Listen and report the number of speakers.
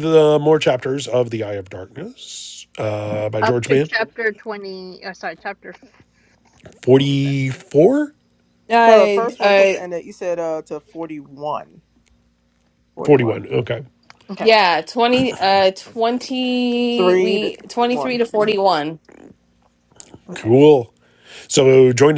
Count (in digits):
4